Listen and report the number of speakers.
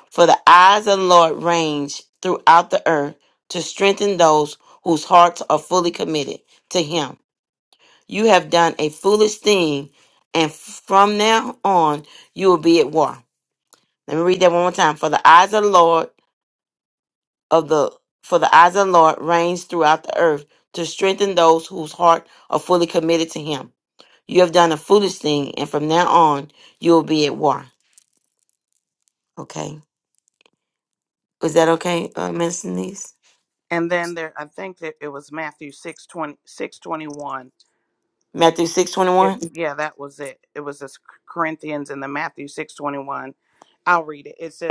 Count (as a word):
two